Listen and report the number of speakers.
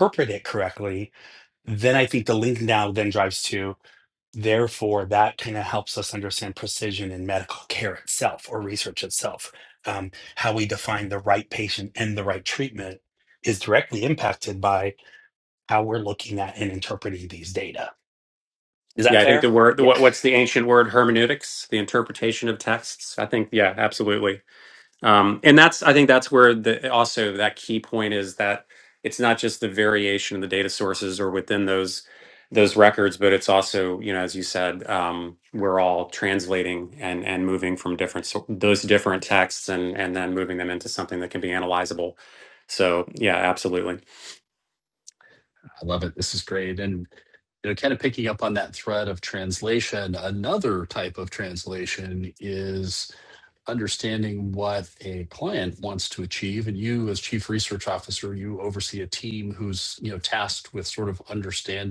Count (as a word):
three